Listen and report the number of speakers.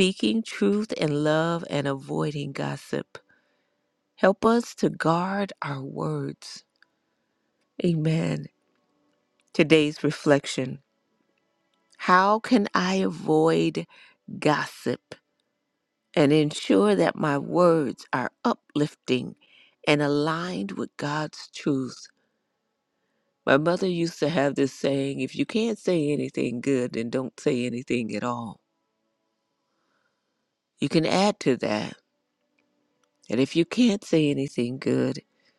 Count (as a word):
one